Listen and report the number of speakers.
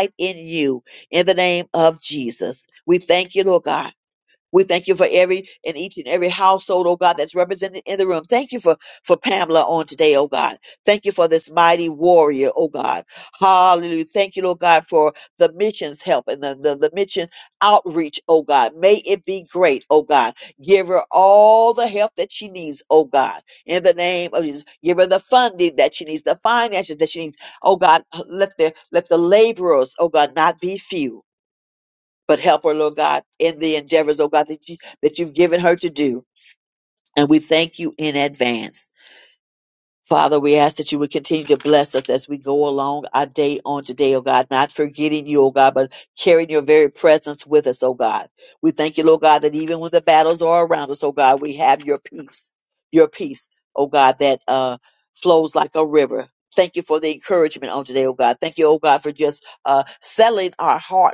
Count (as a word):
one